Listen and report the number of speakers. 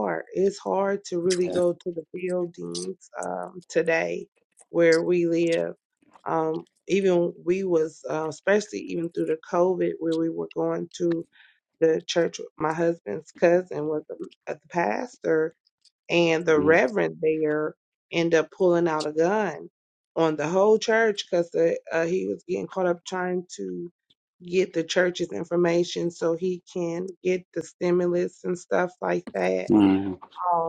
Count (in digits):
2